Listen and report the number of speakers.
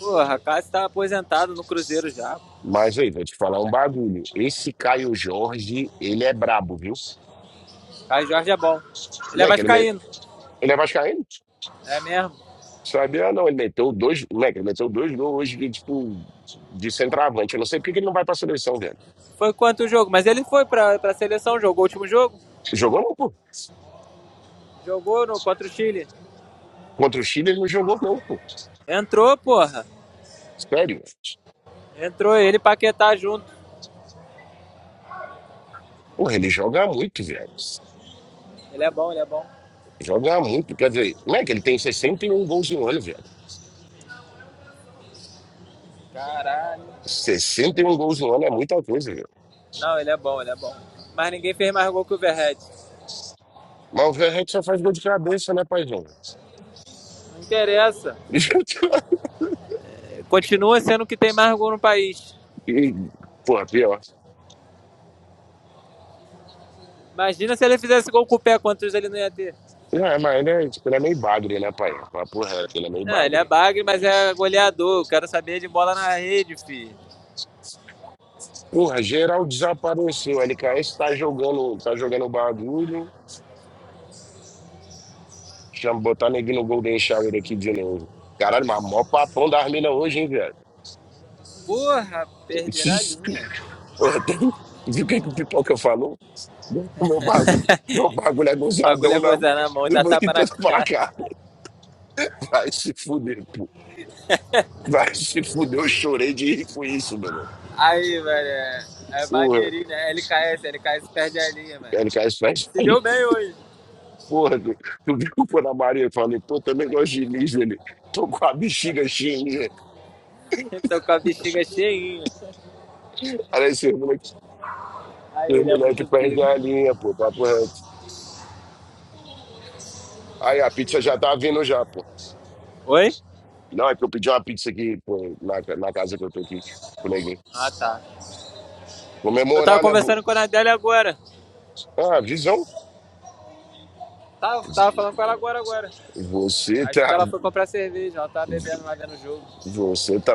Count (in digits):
2